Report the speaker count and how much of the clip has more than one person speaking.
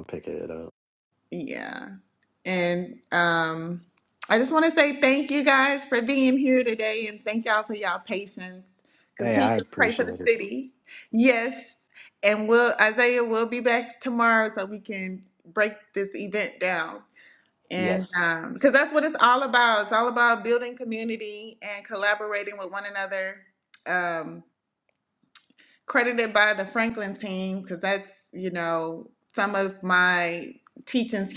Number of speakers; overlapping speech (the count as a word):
two, about 5%